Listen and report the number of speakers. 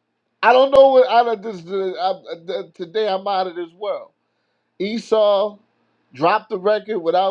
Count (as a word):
one